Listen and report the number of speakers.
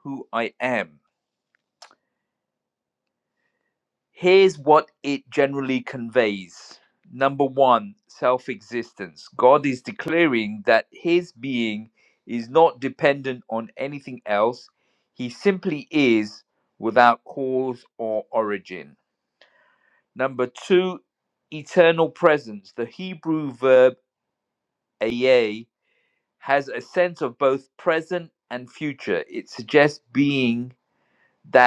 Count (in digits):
1